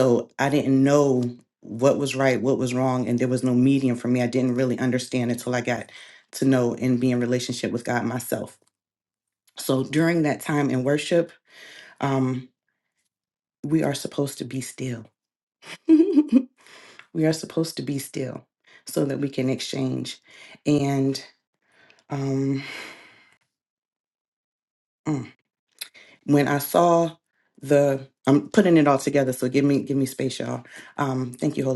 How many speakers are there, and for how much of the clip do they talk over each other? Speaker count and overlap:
1, no overlap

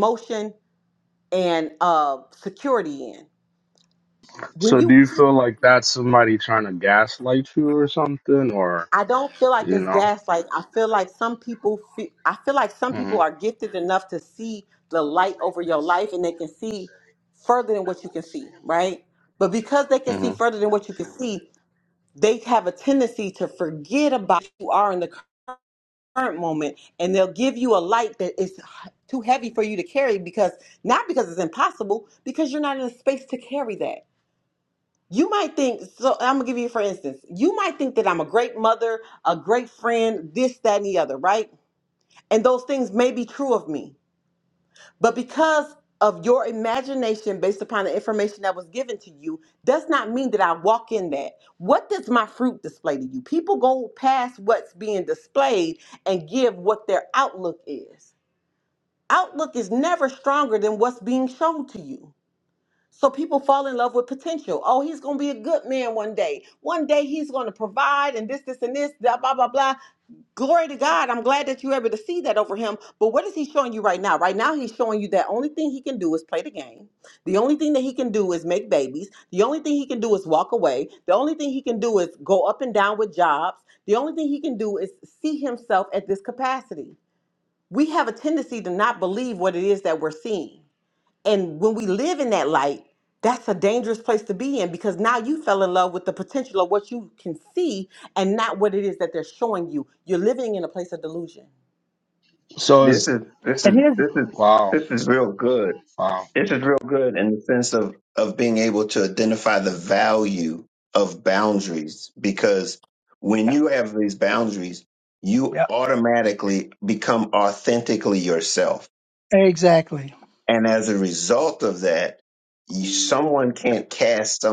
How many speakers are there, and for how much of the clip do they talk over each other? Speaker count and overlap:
4, about 2%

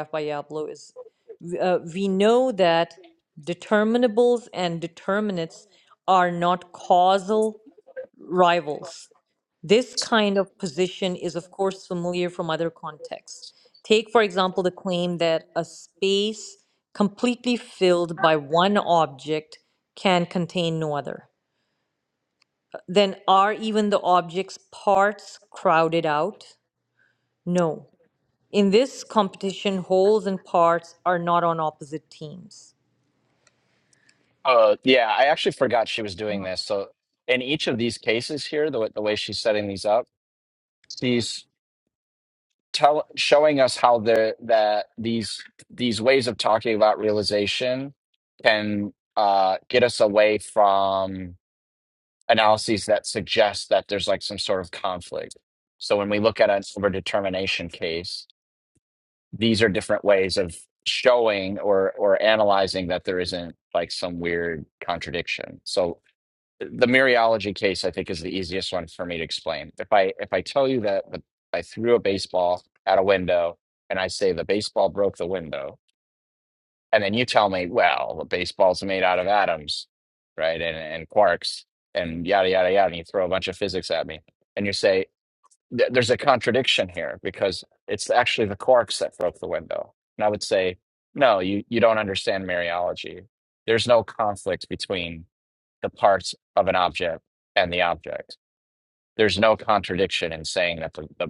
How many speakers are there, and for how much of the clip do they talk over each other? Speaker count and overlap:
2, no overlap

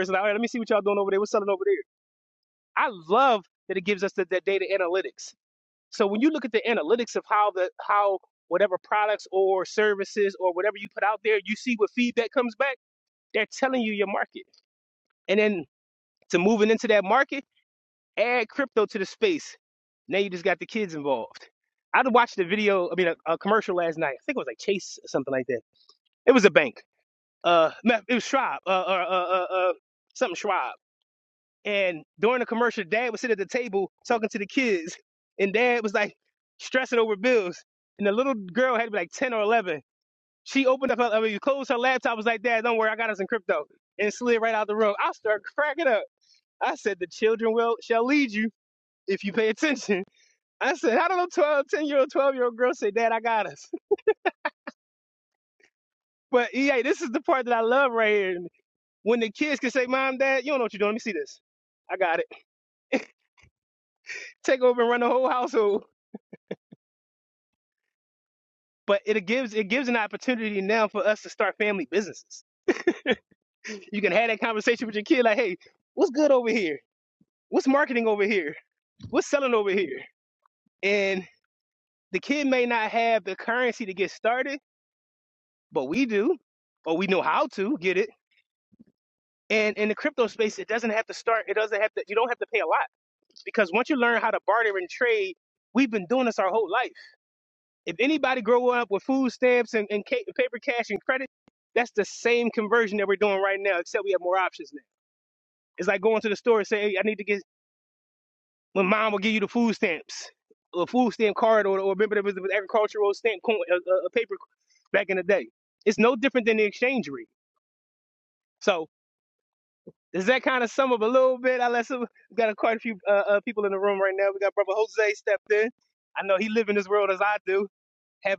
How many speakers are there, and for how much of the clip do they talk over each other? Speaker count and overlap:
1, no overlap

